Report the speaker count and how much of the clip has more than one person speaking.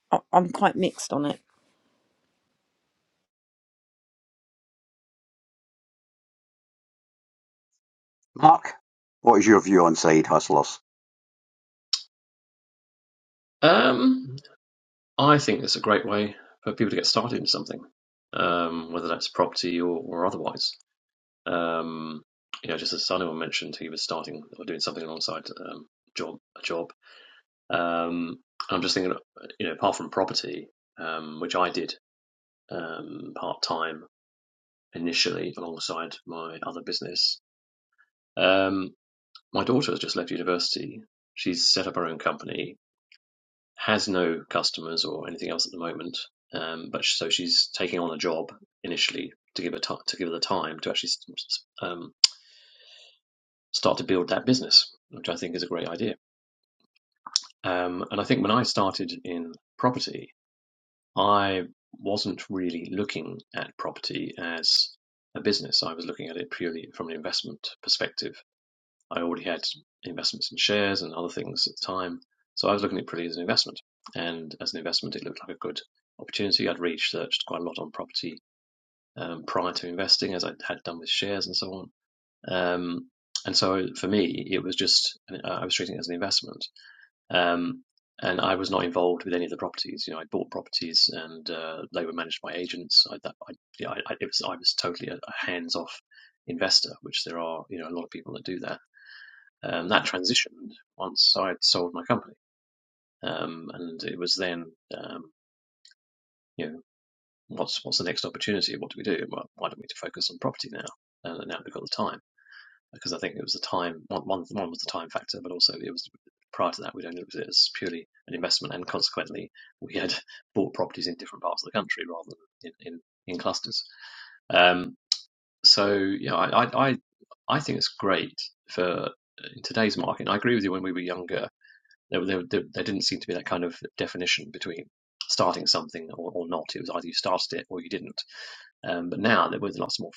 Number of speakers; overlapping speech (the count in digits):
3, no overlap